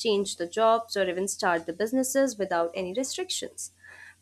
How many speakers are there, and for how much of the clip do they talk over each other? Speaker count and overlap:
one, no overlap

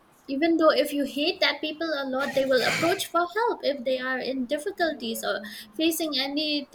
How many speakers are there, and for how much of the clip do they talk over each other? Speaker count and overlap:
one, no overlap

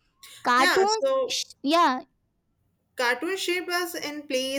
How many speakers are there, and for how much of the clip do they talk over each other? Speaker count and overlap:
two, about 17%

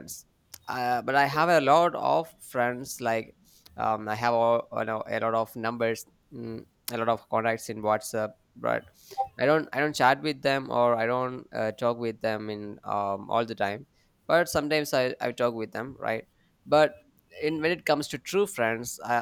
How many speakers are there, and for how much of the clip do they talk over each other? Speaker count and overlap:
one, no overlap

